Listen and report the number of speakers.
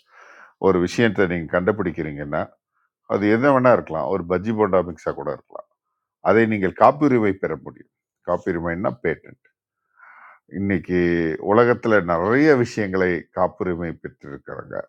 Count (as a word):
one